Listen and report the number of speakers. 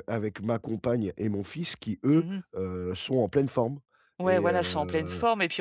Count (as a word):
two